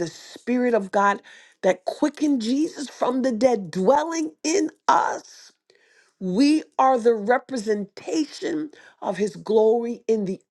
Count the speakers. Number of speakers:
1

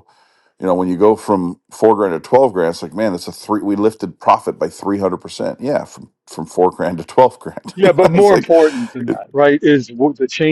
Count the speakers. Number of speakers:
2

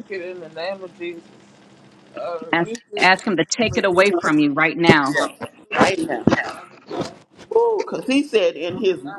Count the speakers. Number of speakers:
3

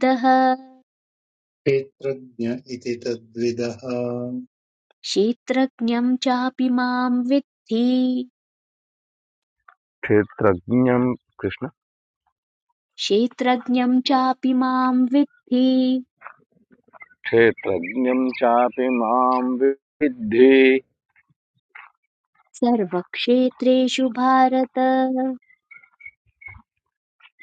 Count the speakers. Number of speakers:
3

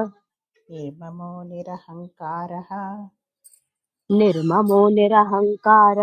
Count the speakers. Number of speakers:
2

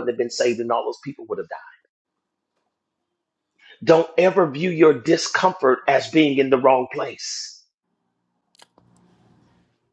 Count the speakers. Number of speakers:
1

